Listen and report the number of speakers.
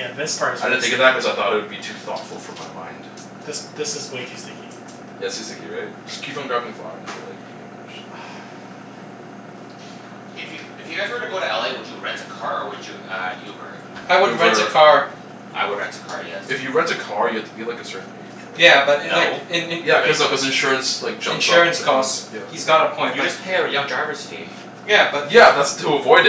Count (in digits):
4